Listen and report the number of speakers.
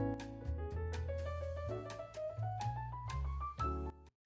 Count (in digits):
0